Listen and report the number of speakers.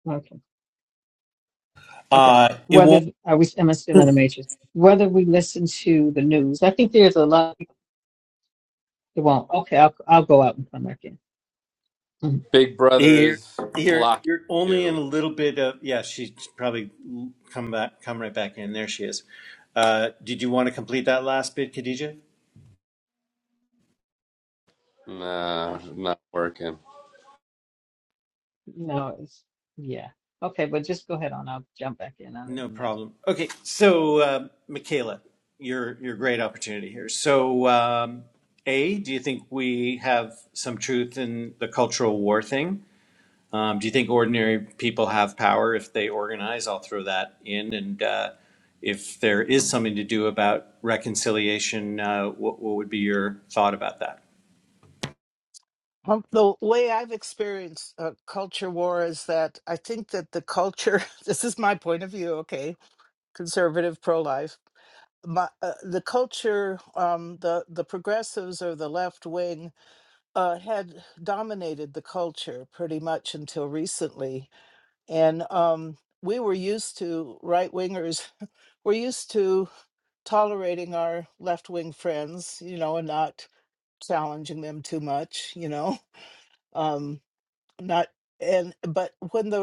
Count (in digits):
4